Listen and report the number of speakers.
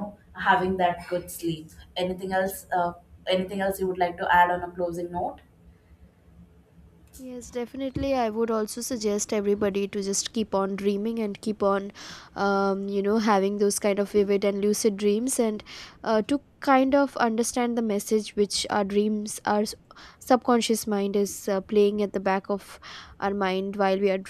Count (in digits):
2